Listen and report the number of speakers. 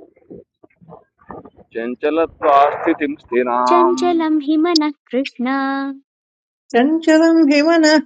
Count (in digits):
3